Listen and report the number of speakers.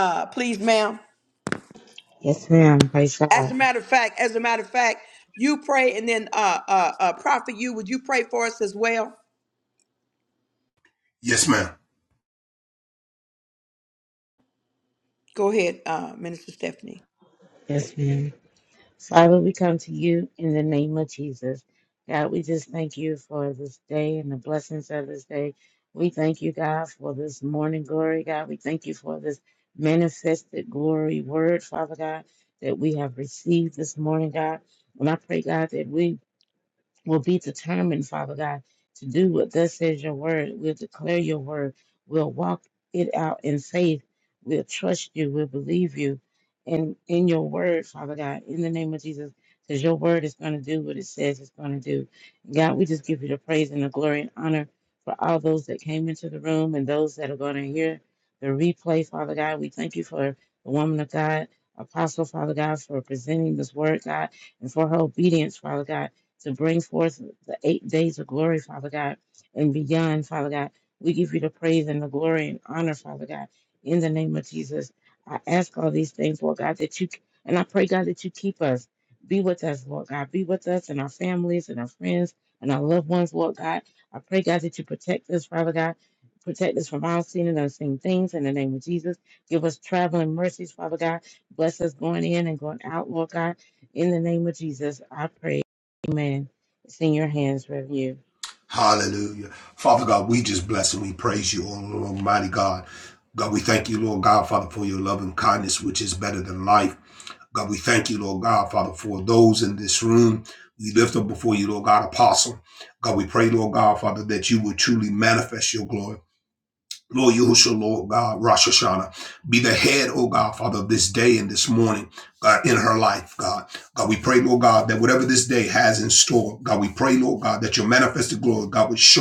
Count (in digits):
3